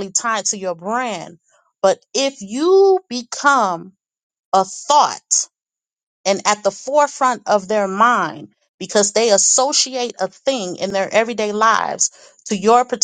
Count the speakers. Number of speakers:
one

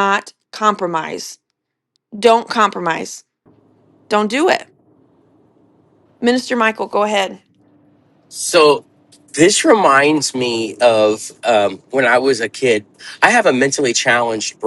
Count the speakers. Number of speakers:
two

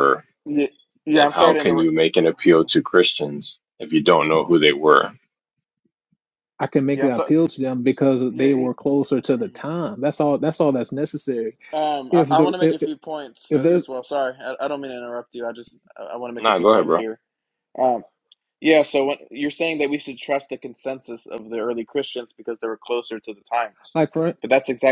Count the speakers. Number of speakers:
three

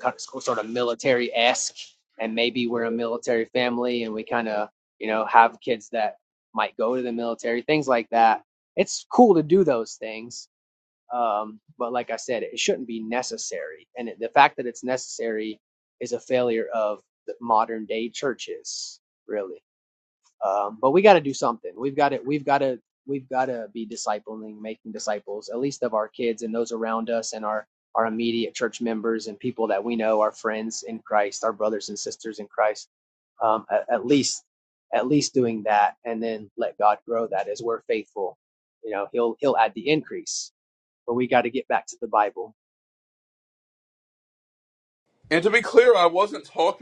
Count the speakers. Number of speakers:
two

